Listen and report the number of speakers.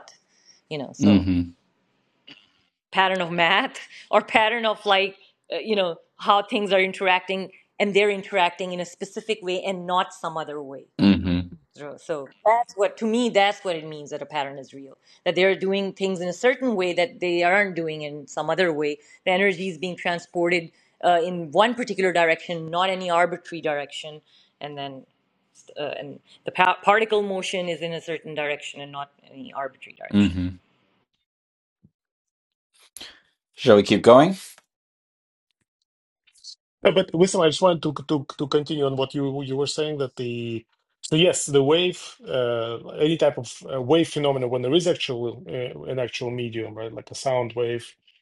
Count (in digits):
3